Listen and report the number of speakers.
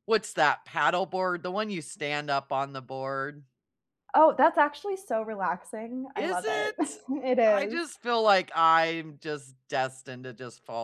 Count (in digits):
2